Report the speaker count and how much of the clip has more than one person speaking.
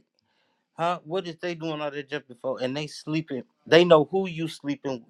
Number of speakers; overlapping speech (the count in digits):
1, no overlap